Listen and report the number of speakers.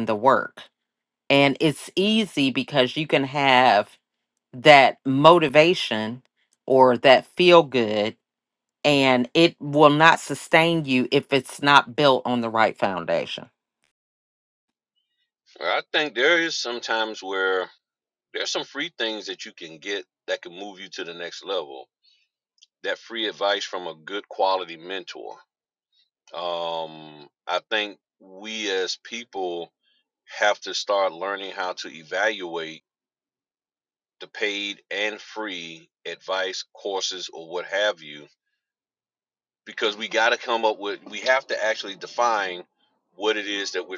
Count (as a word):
two